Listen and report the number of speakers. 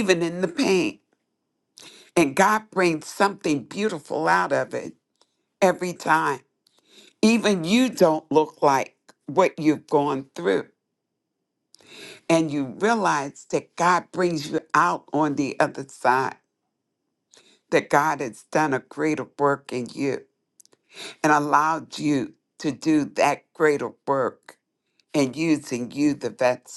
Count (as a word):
one